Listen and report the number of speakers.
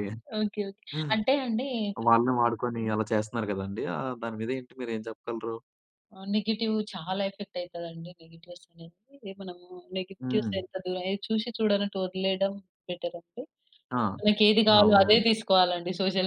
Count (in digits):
2